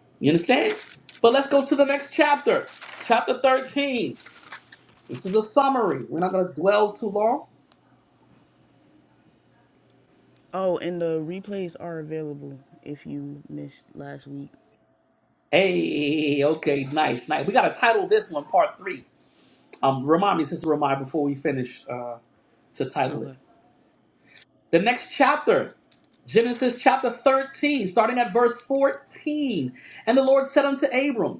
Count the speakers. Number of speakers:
two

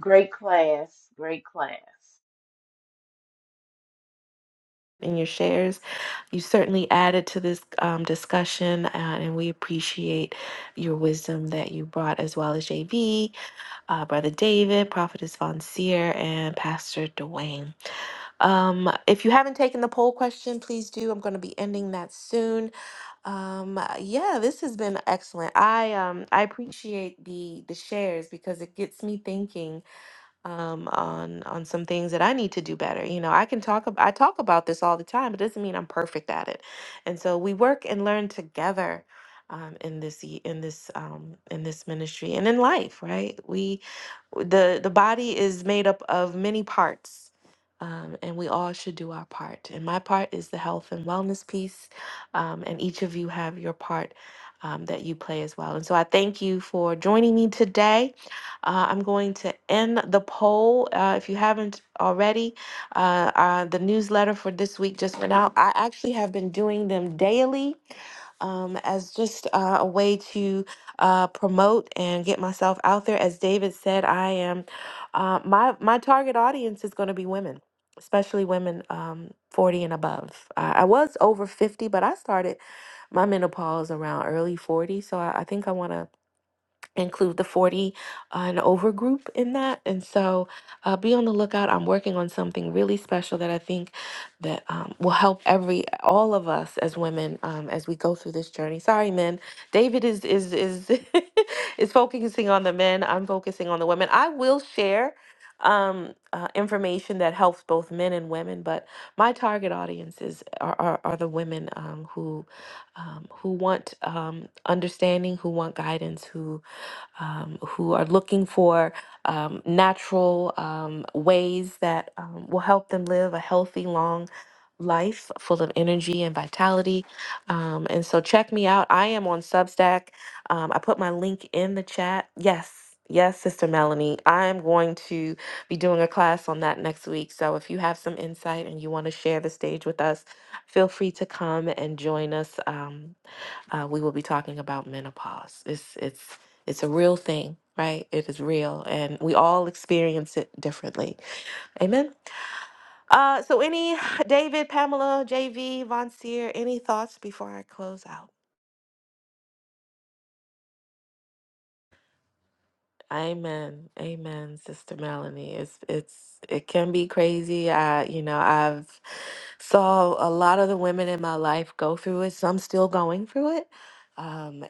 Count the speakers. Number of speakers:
two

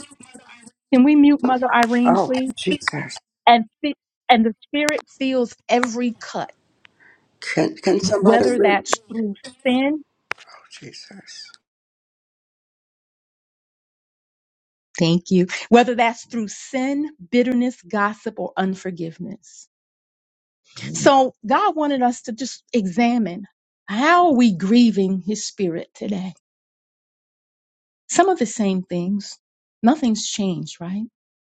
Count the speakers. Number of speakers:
two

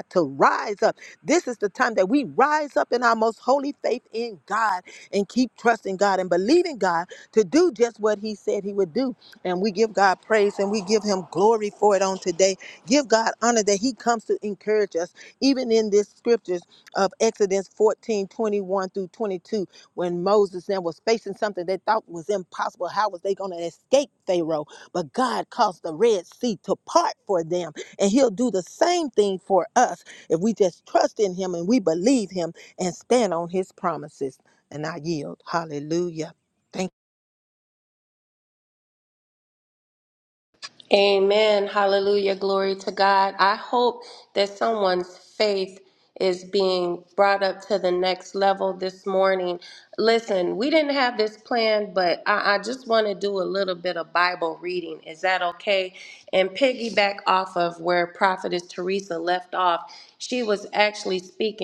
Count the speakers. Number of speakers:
two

